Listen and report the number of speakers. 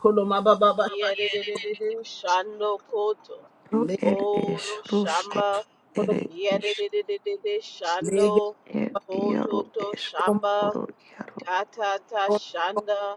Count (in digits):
3